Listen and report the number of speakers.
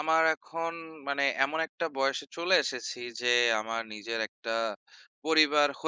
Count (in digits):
1